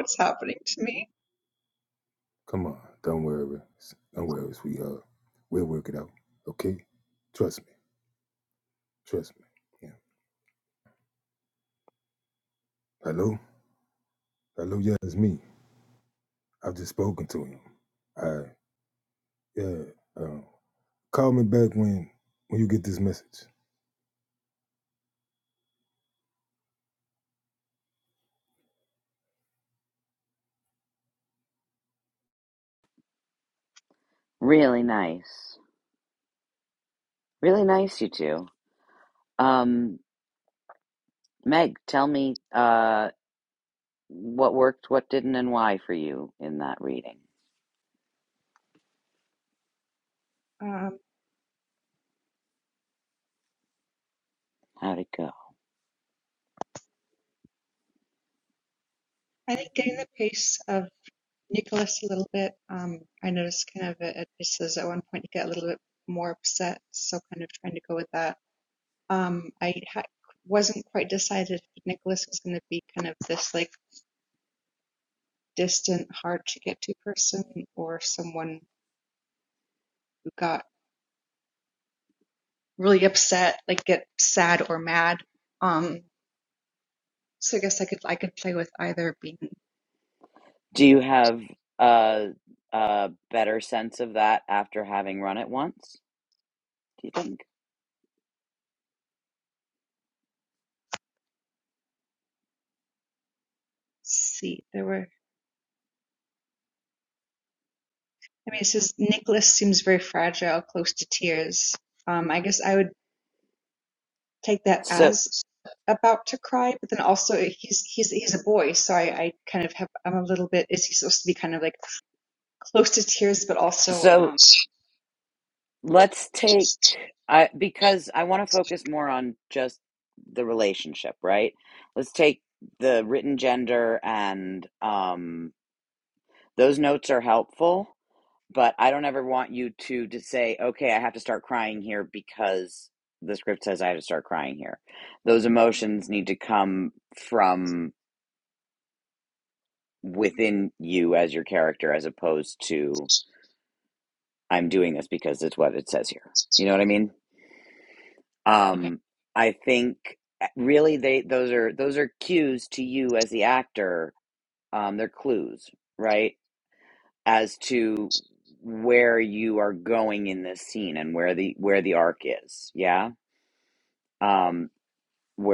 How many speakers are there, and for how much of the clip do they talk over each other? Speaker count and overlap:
3, about 1%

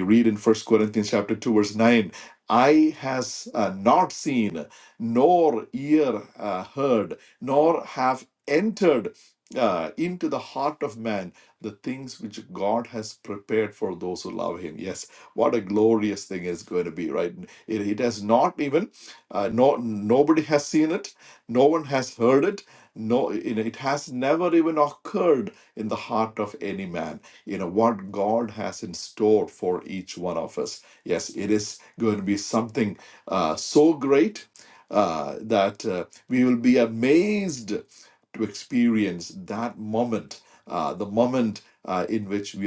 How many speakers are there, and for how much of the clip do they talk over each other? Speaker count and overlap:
1, no overlap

